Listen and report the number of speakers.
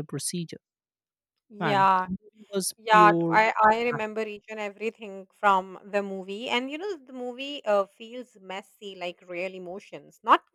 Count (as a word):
two